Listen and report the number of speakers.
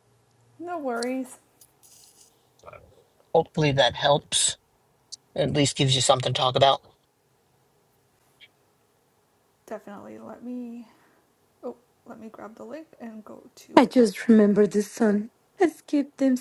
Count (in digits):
3